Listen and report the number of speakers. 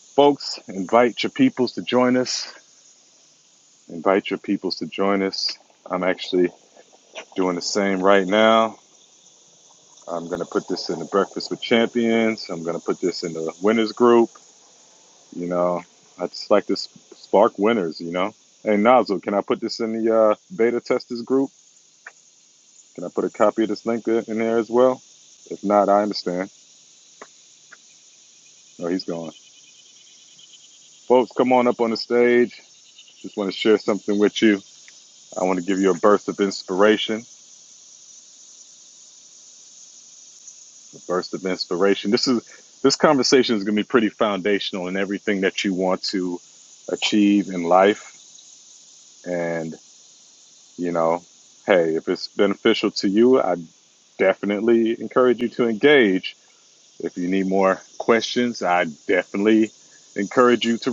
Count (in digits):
1